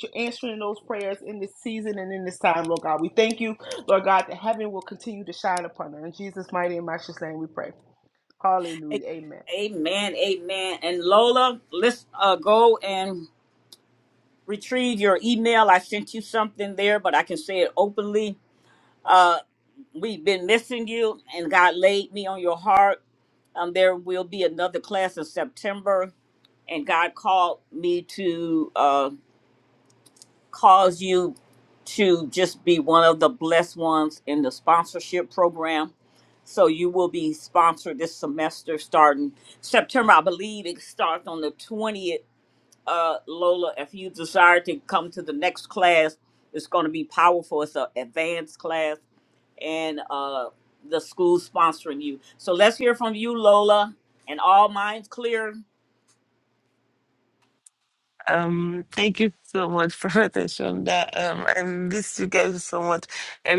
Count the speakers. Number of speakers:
3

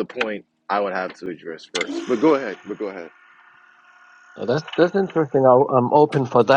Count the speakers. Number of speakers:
2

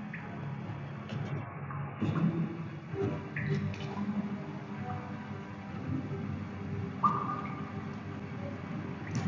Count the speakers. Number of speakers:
0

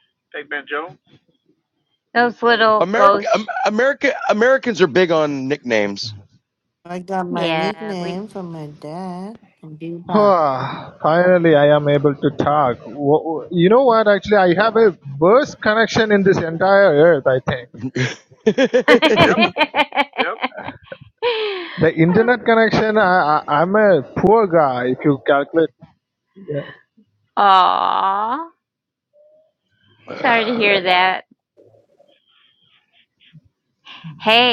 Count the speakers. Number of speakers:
5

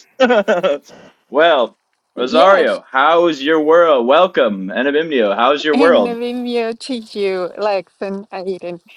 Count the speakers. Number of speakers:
2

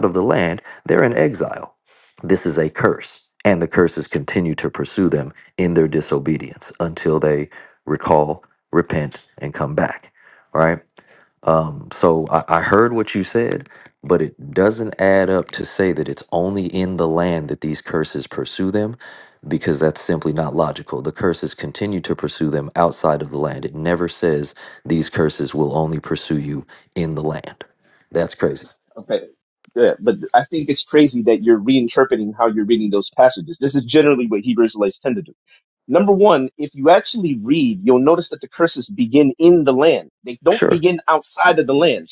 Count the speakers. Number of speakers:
2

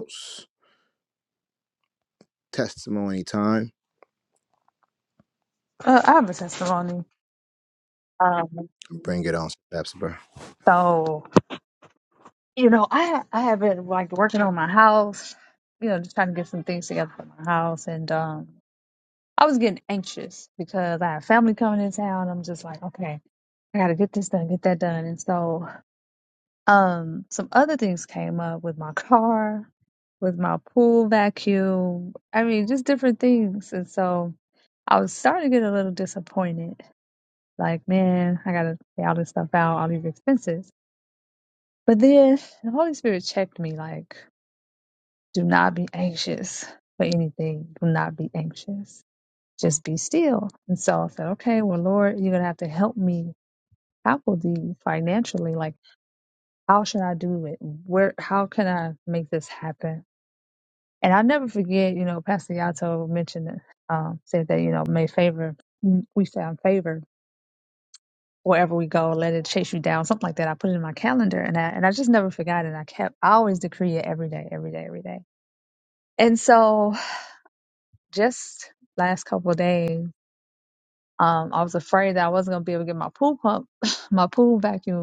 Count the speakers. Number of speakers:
2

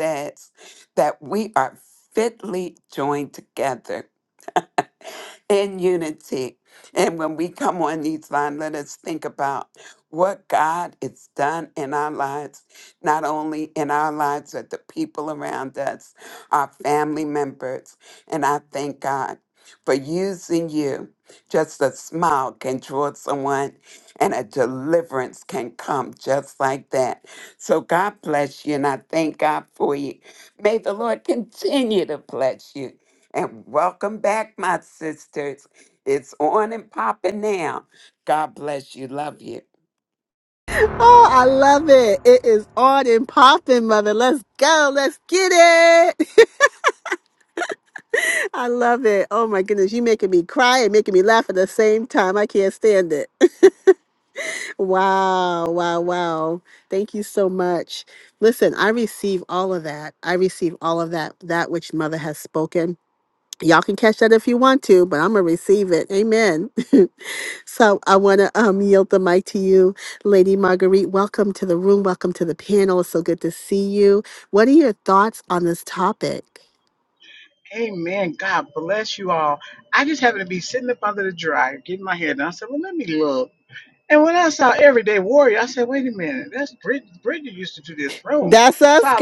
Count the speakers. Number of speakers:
3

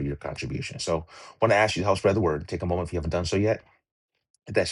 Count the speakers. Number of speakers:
1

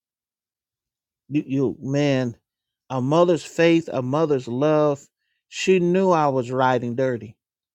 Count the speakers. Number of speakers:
1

